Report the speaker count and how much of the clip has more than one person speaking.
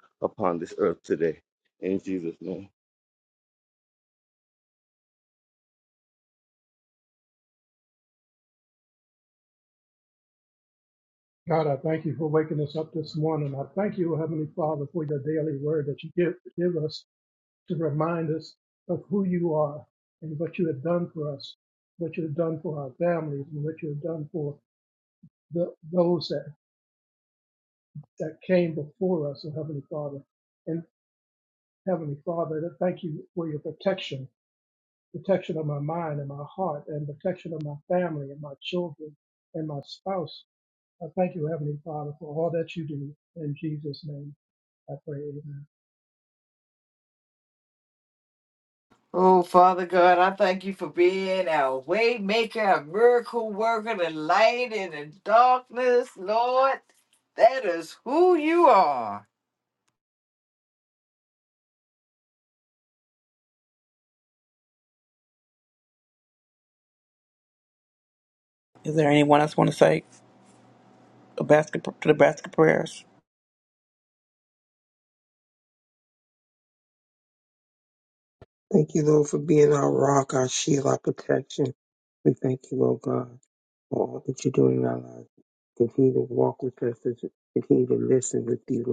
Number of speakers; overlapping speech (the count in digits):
5, no overlap